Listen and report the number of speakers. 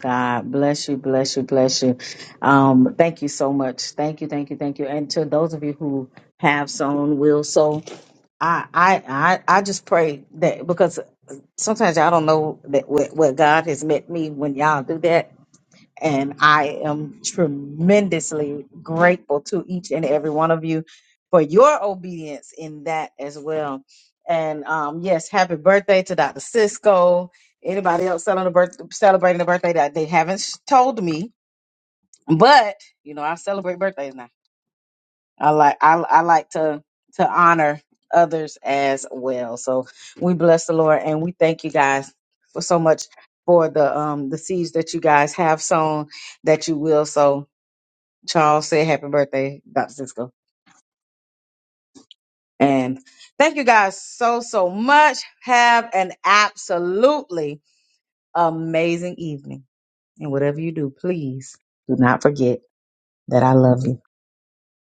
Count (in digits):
1